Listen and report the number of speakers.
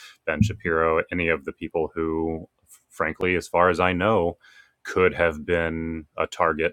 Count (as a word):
one